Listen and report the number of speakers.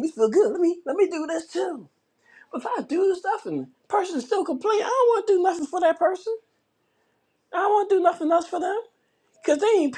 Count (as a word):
one